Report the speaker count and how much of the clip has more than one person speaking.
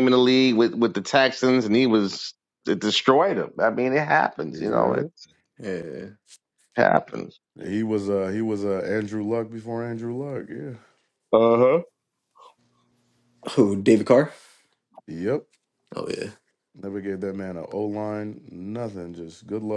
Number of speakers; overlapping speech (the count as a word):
three, about 3%